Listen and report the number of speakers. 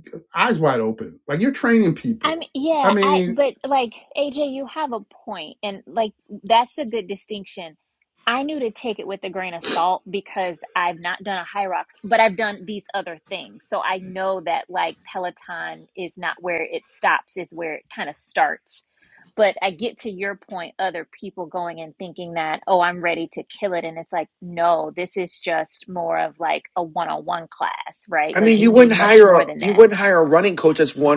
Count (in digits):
3